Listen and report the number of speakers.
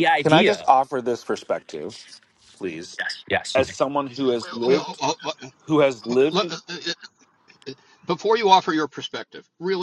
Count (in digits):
3